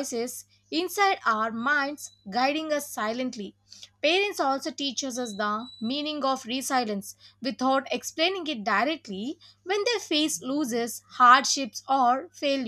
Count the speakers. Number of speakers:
1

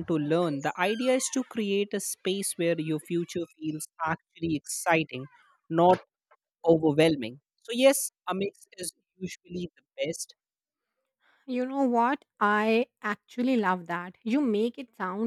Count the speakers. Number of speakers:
2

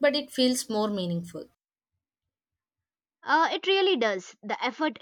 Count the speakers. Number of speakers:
2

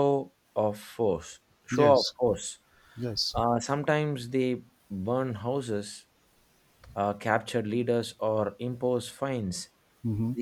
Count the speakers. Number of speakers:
2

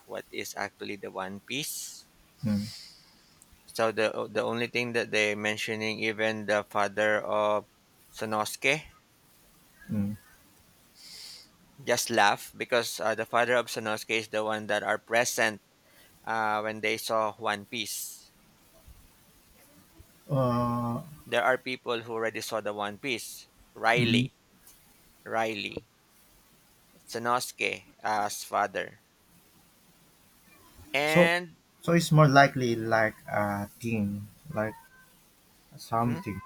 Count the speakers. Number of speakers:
2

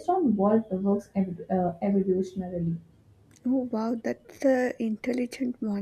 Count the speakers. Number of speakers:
2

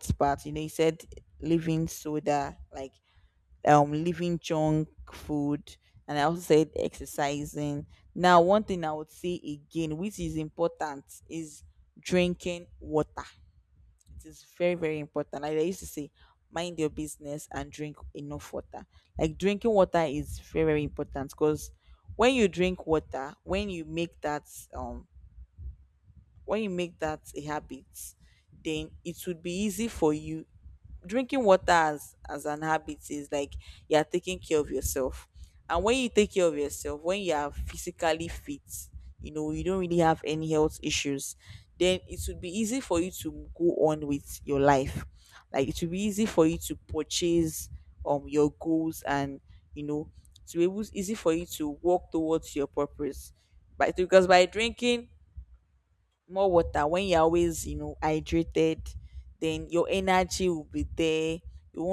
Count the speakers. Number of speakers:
1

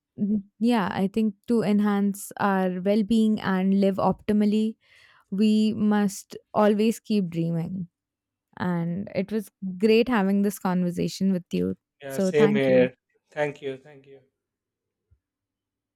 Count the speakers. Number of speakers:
2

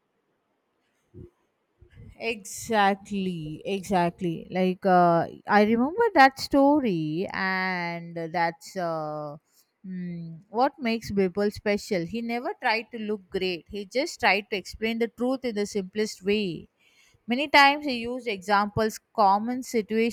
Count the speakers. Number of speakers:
1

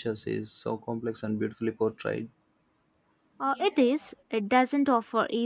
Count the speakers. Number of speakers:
2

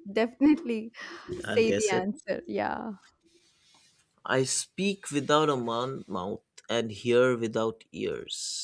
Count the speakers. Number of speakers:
2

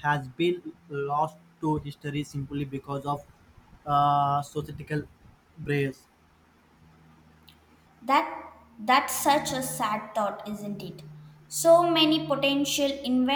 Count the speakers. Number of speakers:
2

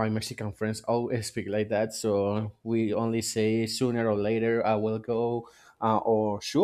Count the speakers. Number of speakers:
1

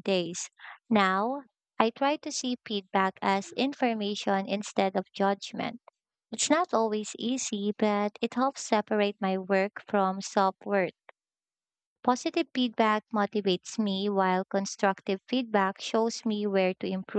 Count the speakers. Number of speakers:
1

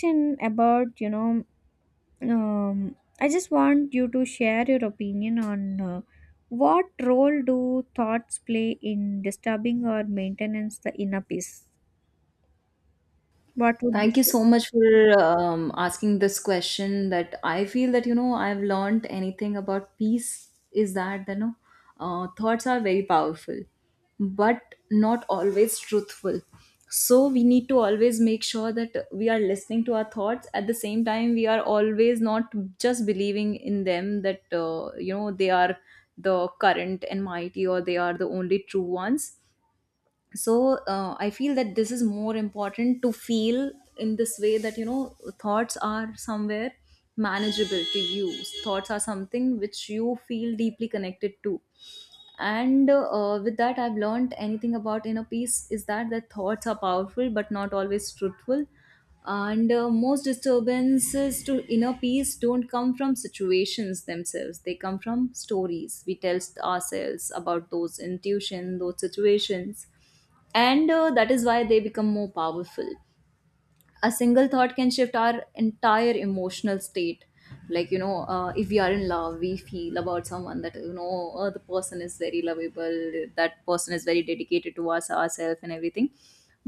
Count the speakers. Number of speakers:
2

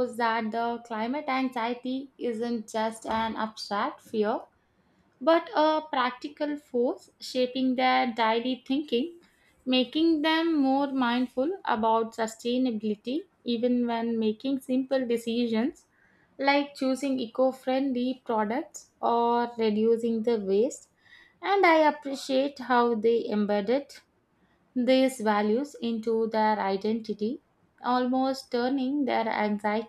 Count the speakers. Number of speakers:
1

